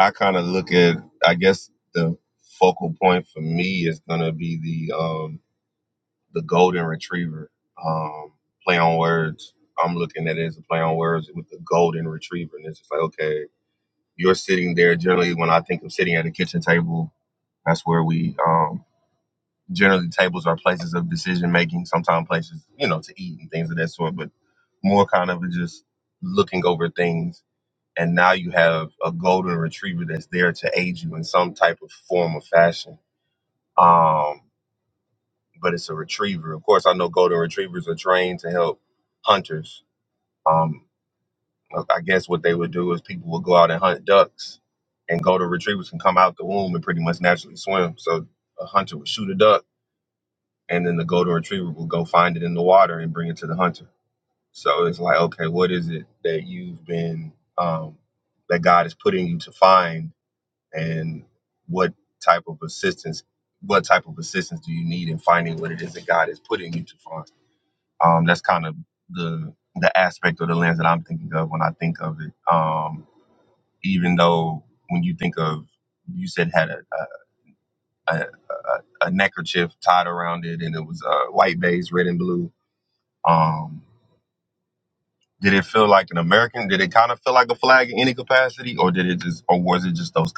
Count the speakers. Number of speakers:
one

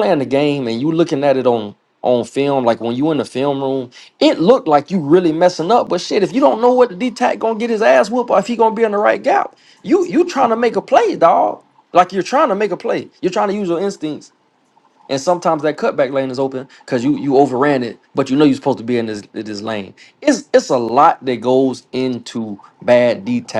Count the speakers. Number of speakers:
one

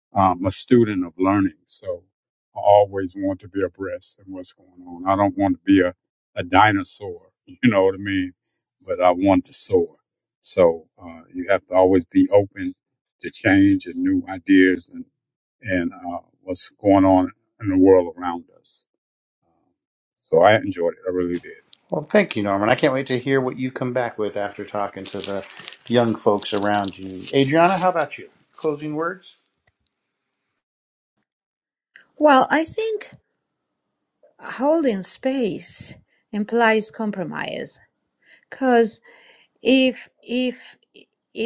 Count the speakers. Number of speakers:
three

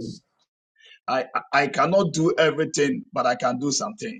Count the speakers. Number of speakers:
one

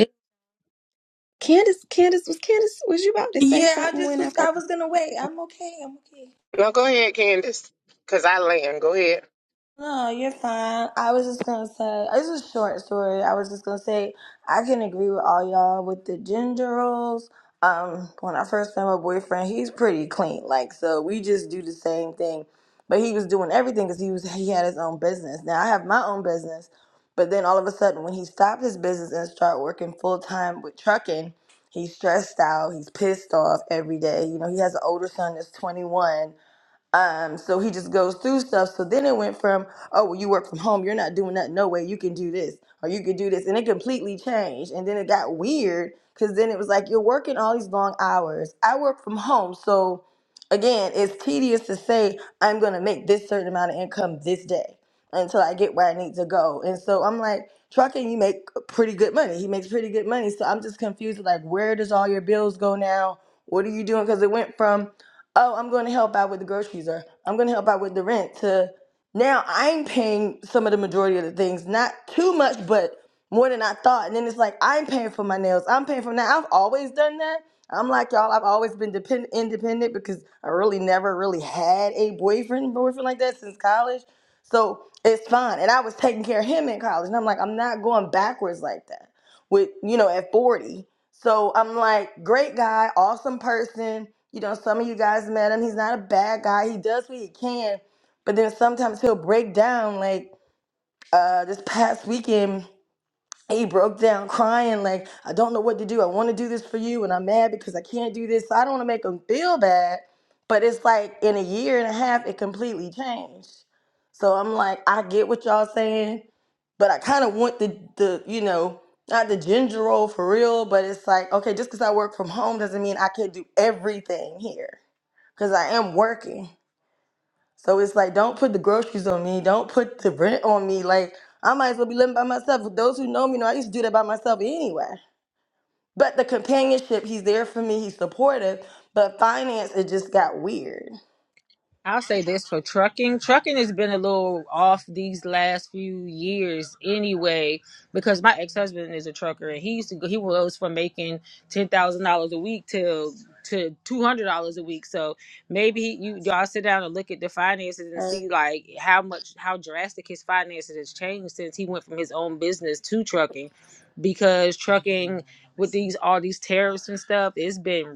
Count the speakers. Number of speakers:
four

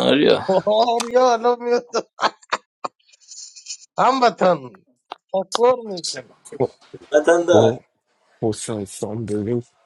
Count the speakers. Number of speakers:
three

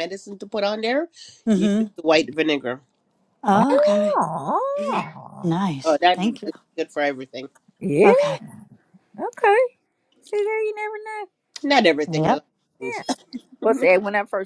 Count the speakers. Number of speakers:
three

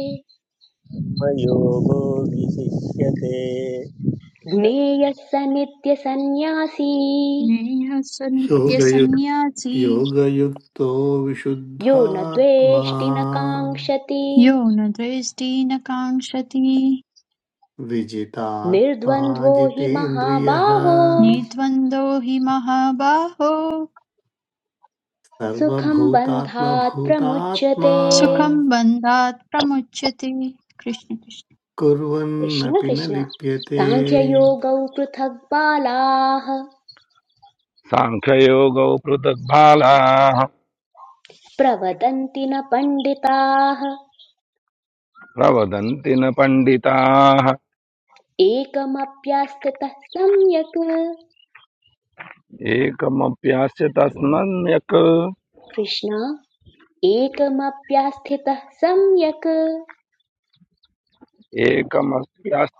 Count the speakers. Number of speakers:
five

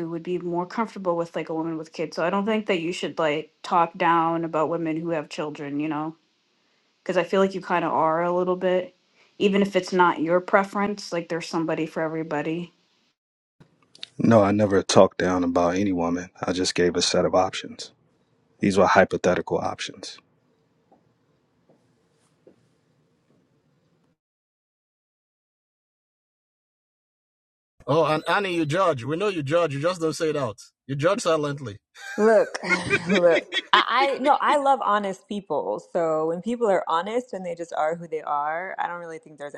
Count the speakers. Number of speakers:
four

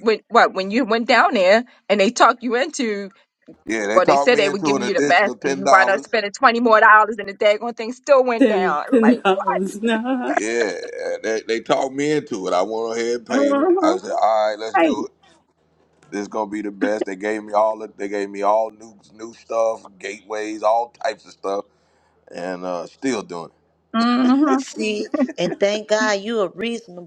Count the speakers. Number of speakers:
four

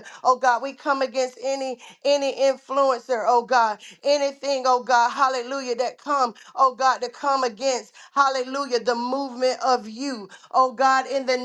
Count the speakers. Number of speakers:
one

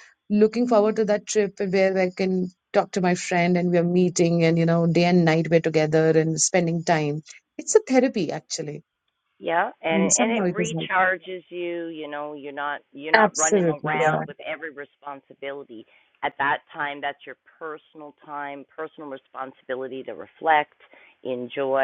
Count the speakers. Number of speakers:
two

